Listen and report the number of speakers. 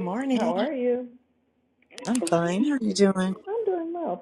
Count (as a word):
two